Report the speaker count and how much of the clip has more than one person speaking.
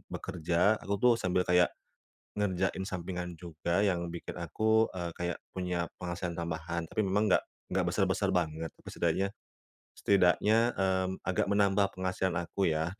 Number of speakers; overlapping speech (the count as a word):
one, no overlap